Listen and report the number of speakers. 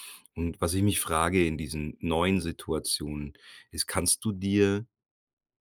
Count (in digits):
1